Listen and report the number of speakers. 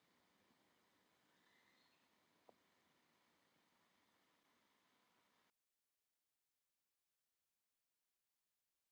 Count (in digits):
0